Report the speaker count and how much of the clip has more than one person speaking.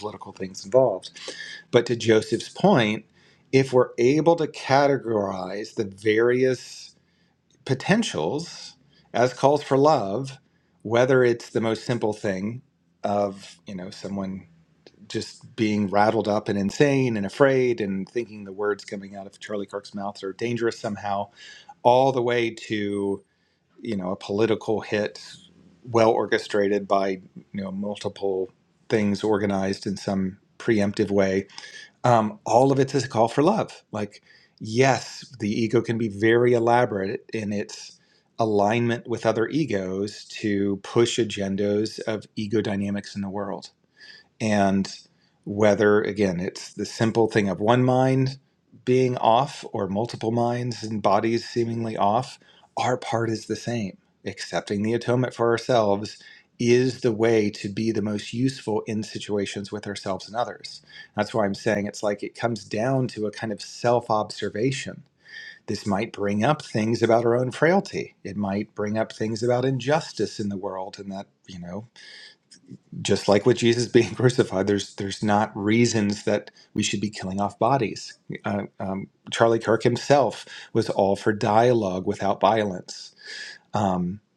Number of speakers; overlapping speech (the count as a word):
one, no overlap